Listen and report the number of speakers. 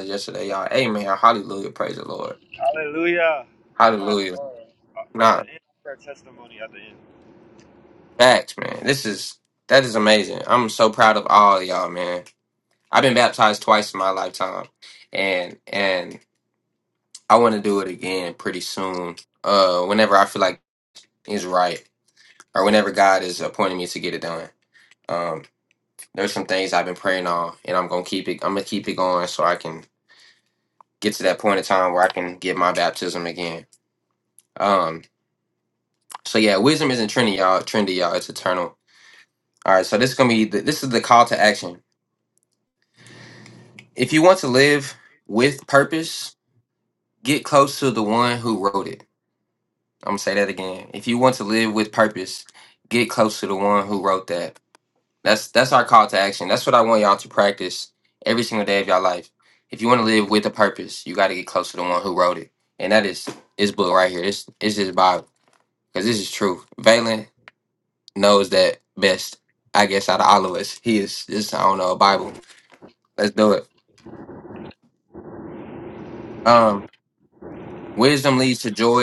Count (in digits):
2